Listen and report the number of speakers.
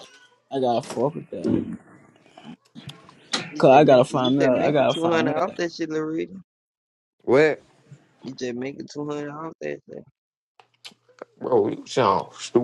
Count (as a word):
three